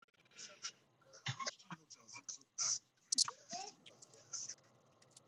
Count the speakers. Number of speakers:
0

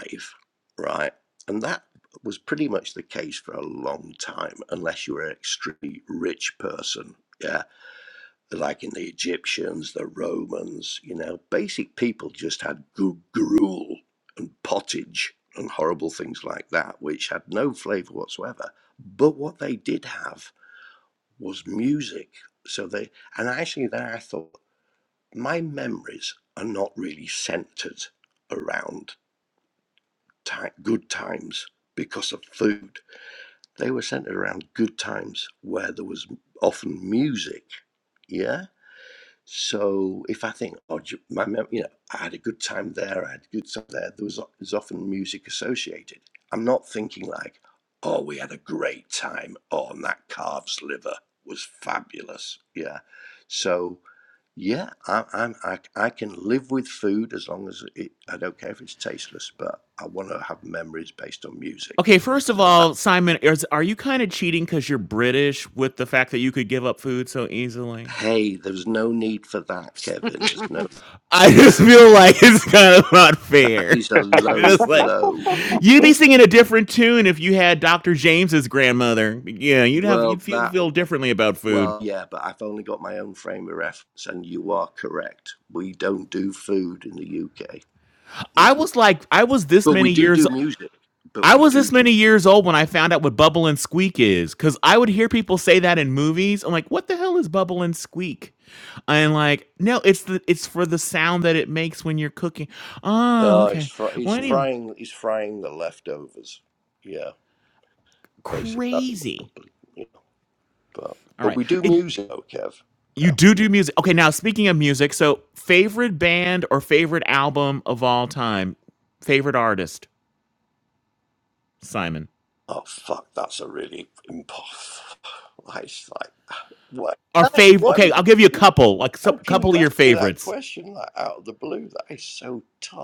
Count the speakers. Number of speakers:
2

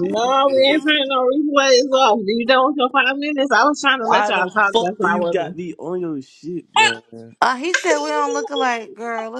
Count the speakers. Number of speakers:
3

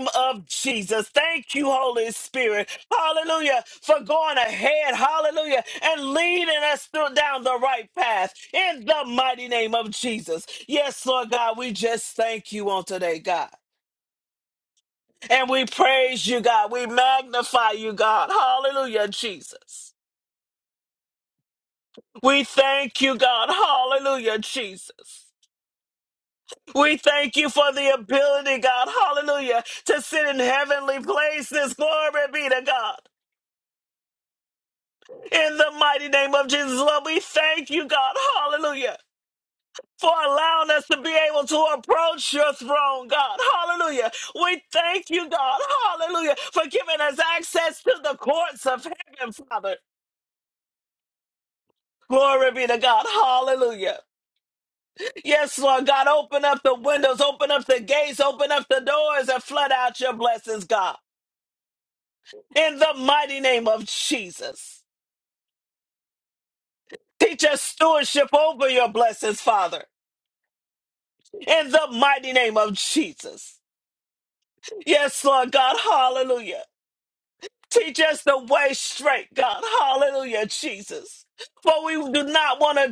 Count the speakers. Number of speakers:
1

